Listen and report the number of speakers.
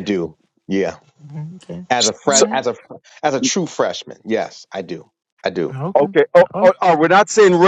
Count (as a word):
three